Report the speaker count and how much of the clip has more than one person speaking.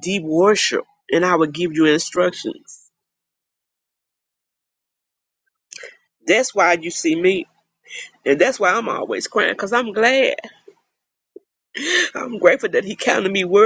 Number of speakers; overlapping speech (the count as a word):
one, no overlap